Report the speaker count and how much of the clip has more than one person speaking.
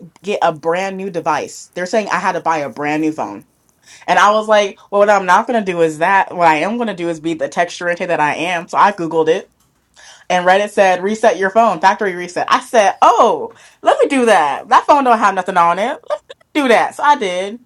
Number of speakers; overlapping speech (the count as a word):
one, no overlap